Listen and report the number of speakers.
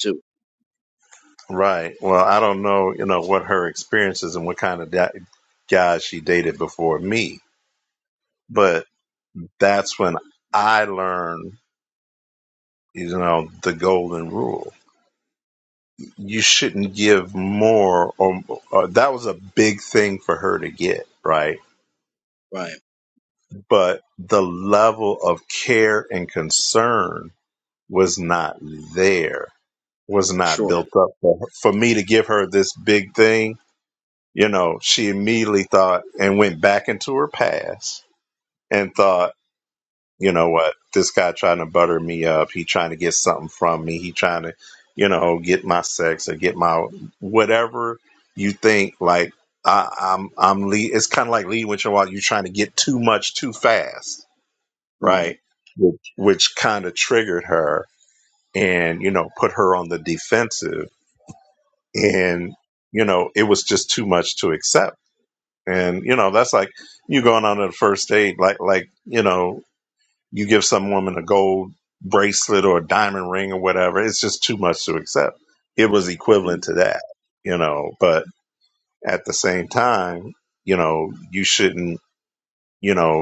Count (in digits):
2